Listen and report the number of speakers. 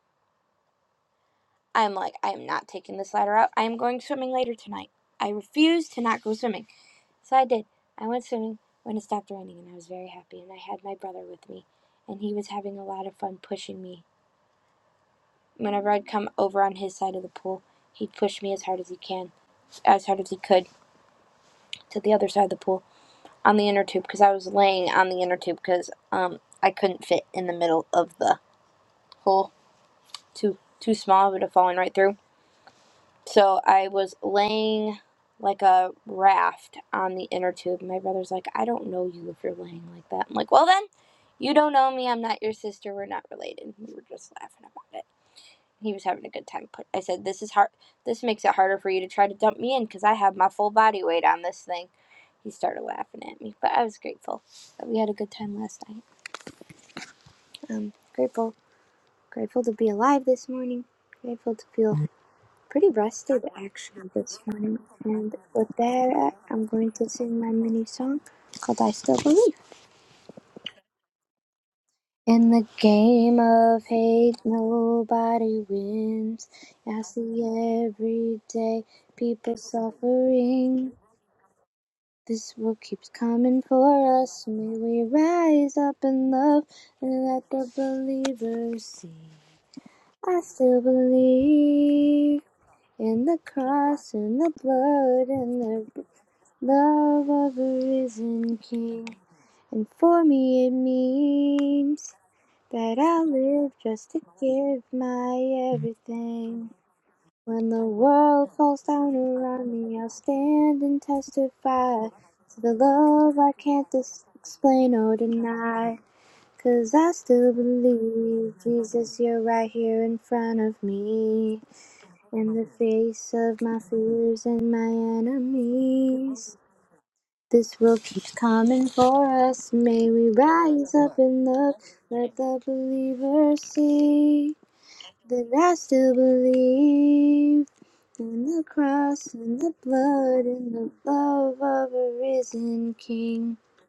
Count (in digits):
1